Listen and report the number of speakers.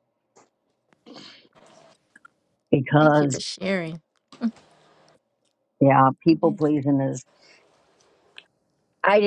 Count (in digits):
2